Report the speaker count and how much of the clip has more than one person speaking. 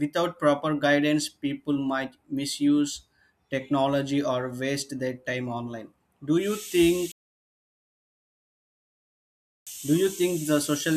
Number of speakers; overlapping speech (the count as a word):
one, no overlap